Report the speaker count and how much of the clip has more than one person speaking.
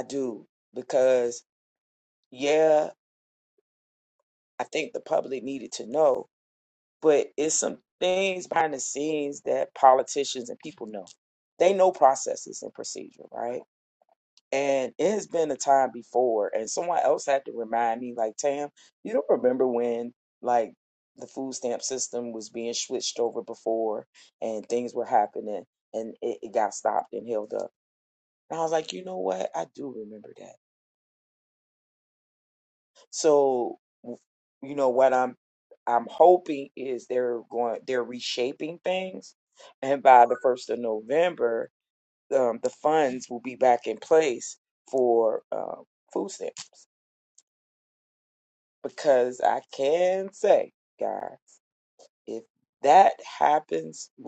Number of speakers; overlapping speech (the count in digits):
1, no overlap